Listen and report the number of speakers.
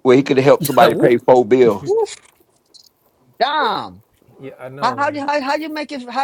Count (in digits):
3